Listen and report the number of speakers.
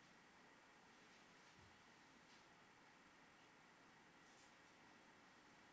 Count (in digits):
0